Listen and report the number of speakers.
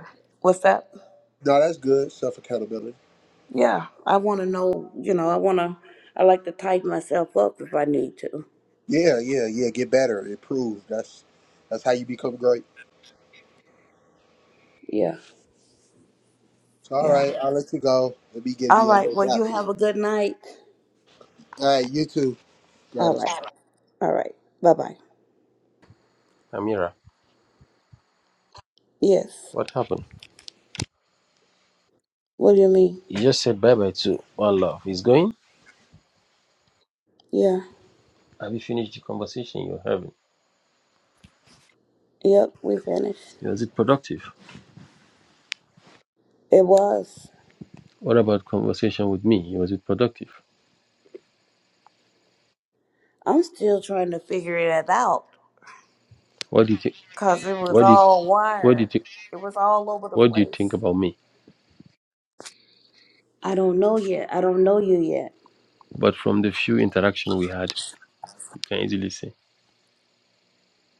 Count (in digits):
3